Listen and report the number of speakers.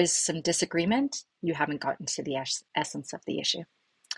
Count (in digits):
1